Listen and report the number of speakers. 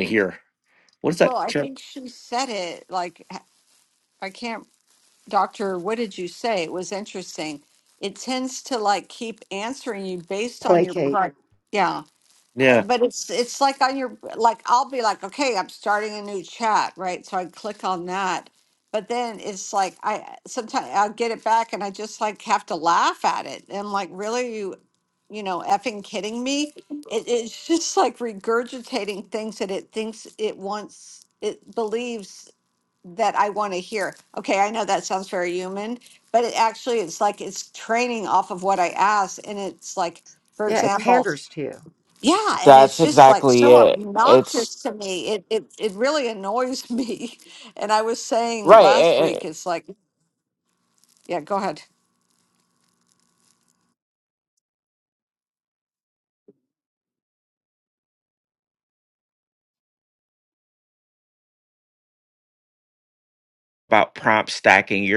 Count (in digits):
4